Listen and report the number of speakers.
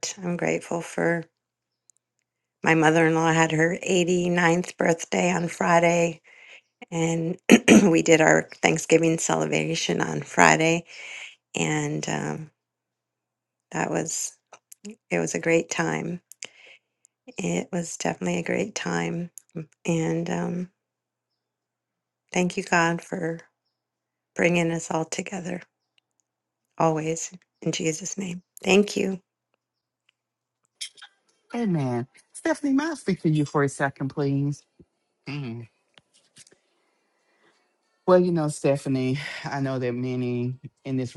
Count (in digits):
2